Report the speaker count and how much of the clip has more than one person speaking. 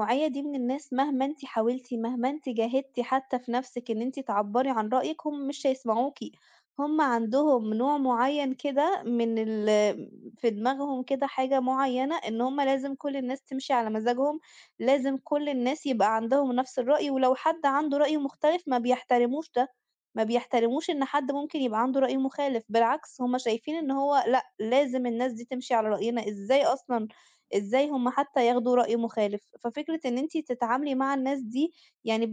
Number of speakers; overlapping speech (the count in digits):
1, no overlap